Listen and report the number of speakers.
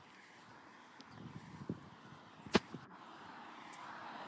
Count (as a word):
zero